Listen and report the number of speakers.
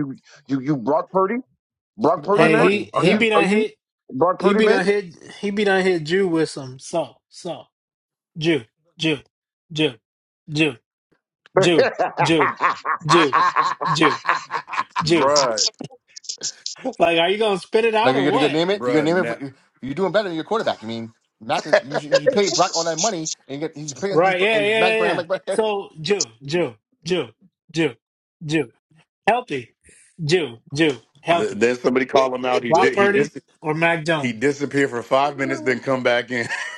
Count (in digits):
4